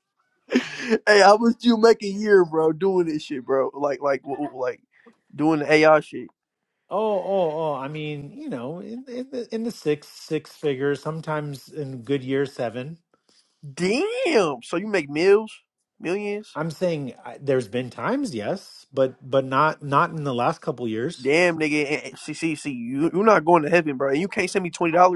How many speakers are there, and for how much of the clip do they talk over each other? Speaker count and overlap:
2, no overlap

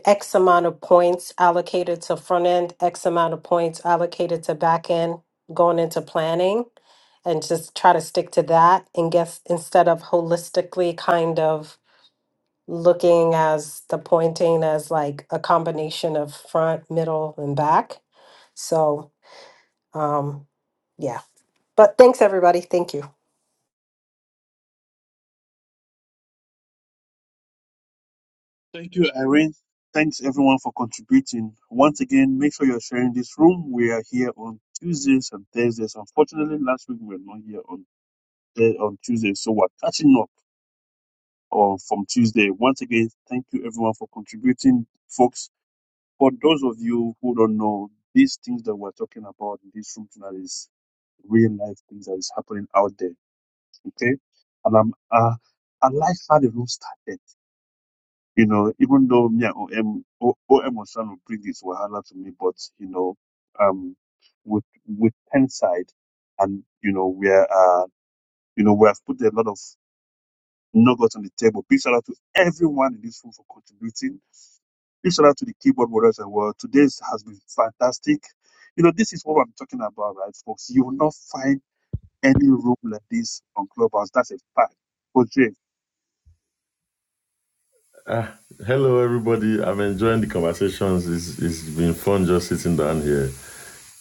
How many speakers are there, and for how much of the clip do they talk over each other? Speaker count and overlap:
3, no overlap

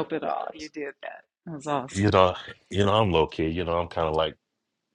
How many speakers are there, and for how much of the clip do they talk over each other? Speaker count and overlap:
2, about 4%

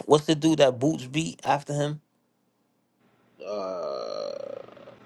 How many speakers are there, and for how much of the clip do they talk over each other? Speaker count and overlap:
2, no overlap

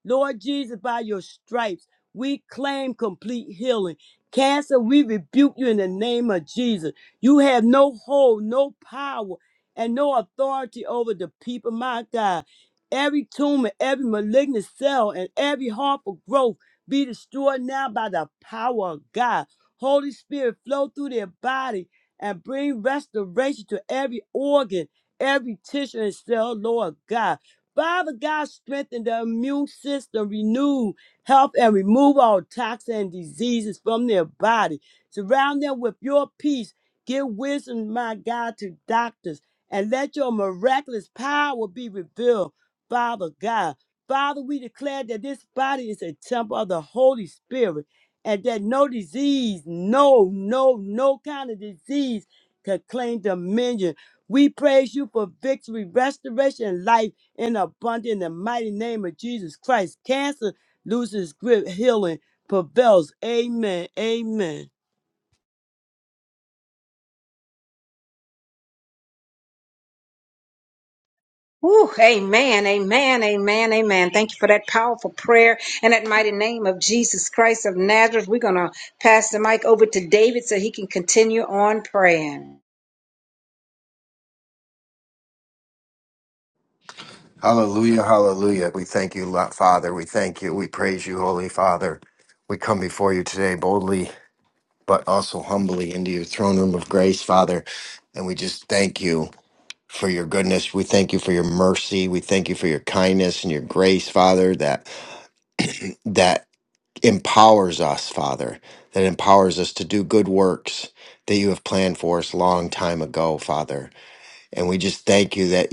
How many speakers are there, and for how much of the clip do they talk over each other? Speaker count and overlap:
3, no overlap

